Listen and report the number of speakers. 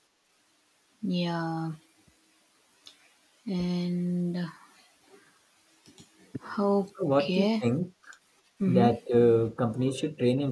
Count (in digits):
2